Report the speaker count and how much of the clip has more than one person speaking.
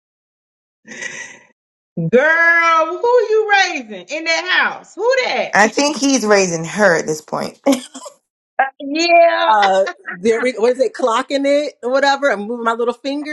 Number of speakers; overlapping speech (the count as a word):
three, about 1%